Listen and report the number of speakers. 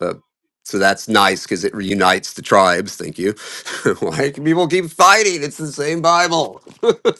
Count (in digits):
1